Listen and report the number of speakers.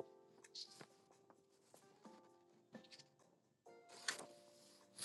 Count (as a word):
zero